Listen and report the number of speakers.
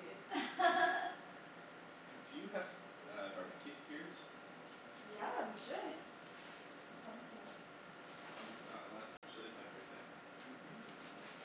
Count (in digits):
2